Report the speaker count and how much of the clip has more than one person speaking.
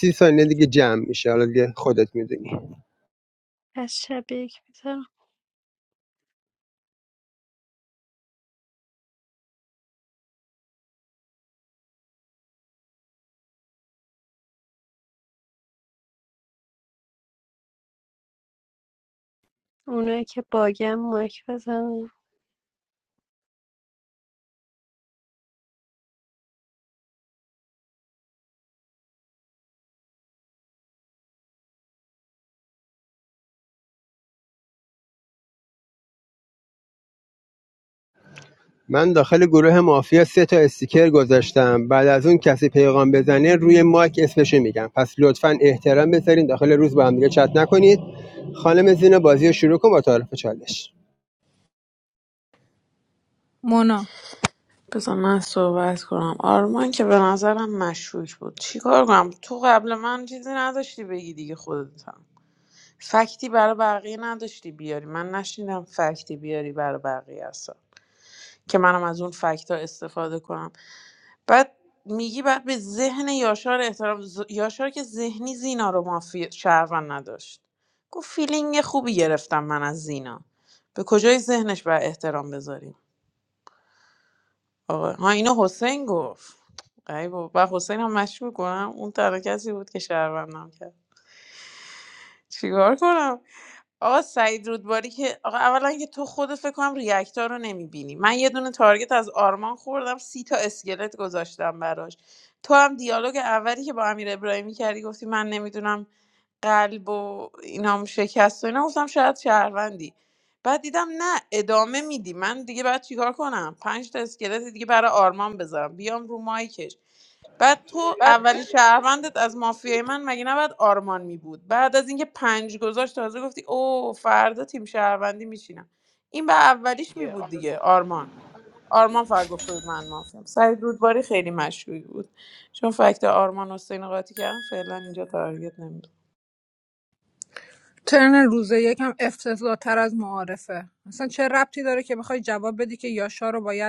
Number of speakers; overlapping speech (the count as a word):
four, no overlap